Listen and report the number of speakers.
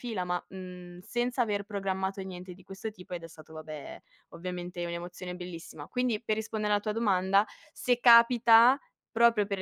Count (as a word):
one